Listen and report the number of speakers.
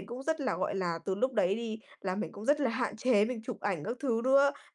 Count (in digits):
1